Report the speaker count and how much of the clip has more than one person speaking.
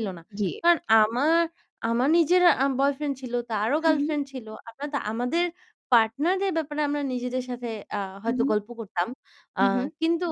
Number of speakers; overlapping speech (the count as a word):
two, about 7%